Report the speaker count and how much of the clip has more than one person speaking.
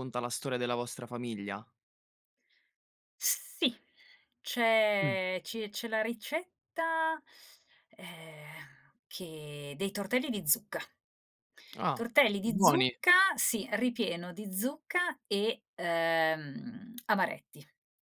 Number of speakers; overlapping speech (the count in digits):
2, about 3%